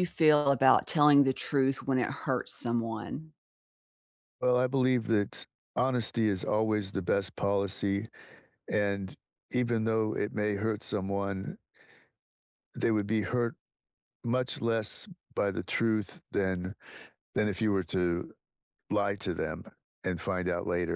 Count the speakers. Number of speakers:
2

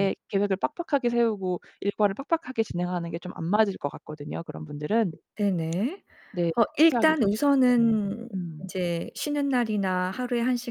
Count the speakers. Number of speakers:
2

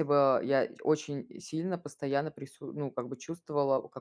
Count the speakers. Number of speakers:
1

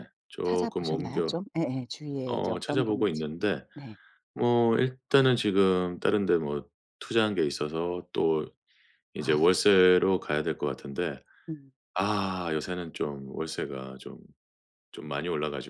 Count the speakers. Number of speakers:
2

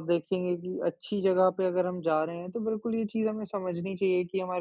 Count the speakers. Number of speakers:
1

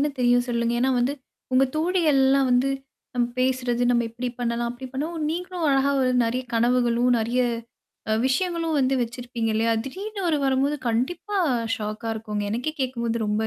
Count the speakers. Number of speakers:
1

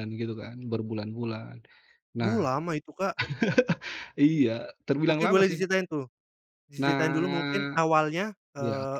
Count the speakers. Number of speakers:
2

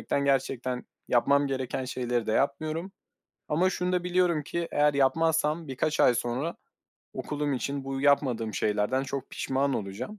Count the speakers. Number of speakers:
1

